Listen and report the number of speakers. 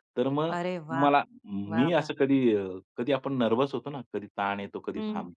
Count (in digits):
2